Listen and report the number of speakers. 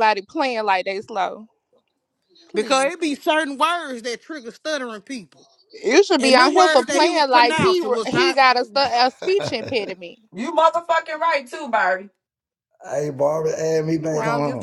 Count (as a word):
four